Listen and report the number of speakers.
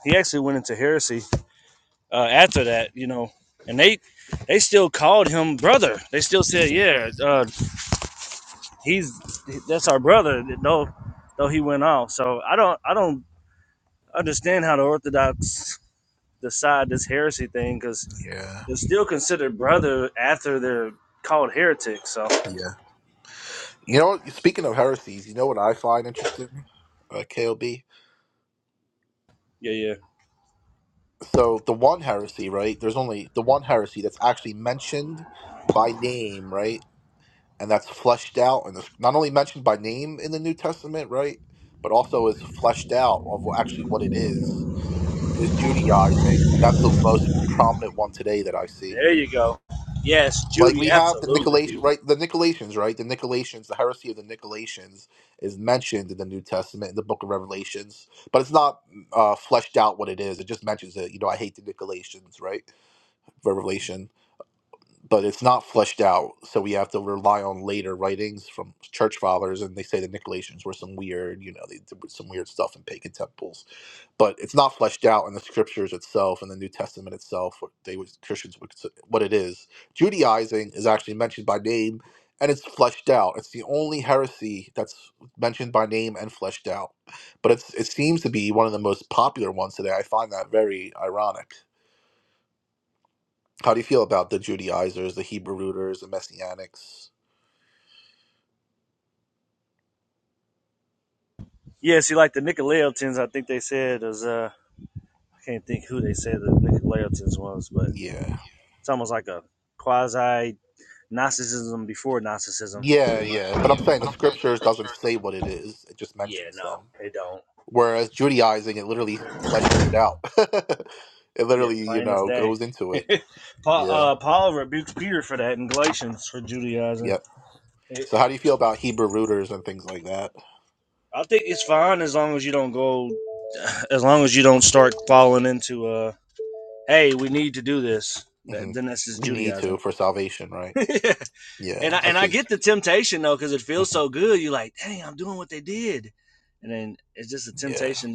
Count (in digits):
2